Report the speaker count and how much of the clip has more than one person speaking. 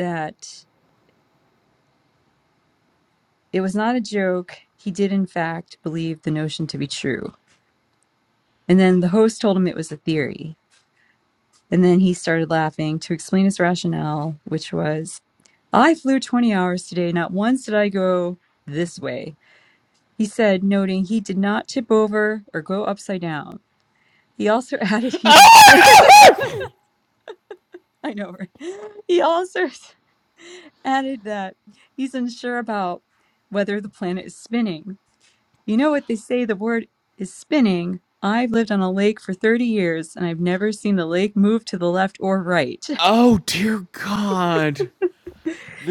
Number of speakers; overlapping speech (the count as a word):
two, no overlap